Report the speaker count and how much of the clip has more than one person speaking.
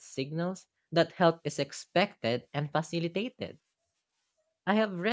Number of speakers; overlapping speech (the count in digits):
1, no overlap